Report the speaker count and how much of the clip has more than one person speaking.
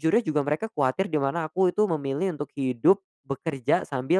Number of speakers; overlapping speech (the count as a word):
one, no overlap